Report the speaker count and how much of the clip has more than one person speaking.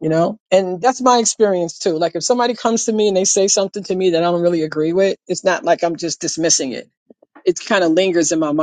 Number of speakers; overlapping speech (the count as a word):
one, no overlap